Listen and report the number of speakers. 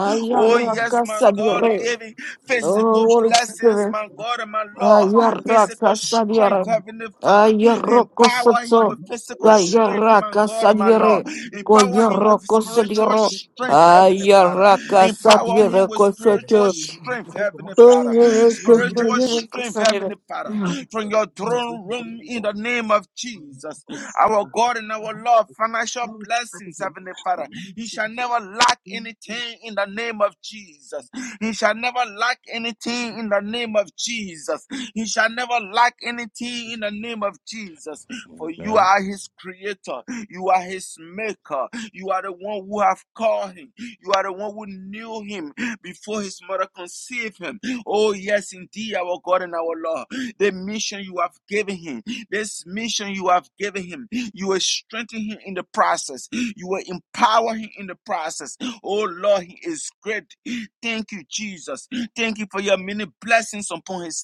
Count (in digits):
2